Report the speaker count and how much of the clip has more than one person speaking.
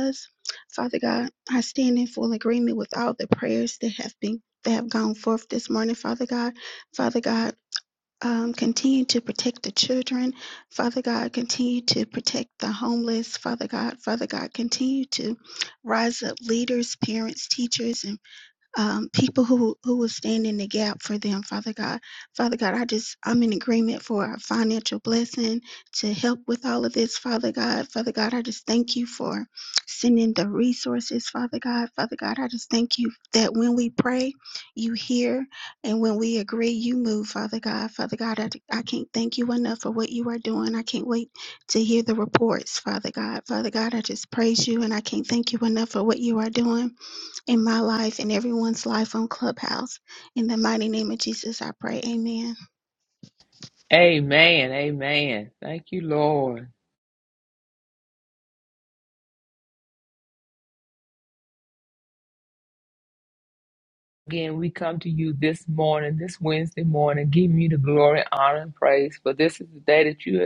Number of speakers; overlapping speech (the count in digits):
2, no overlap